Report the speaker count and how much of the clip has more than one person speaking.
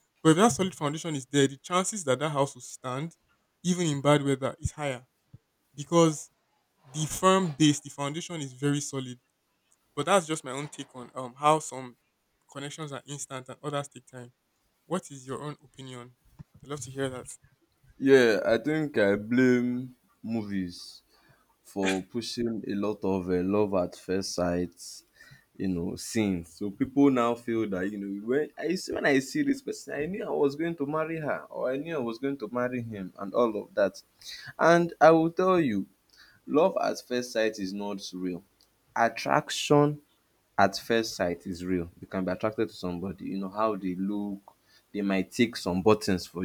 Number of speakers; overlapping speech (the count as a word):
two, no overlap